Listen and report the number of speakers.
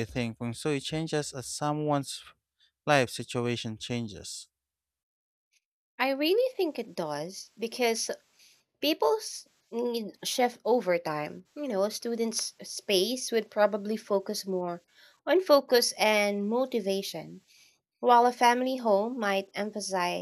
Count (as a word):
two